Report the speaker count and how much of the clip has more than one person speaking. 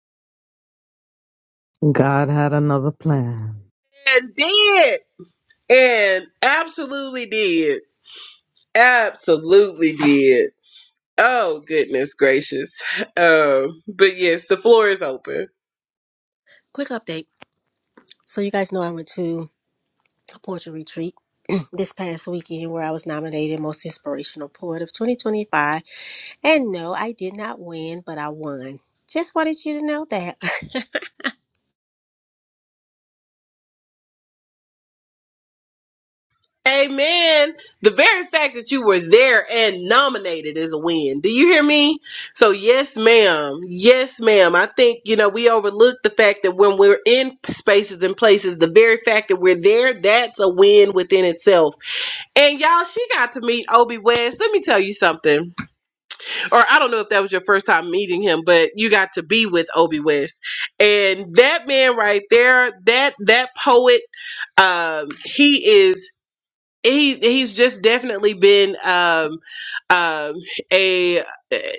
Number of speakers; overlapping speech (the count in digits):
3, no overlap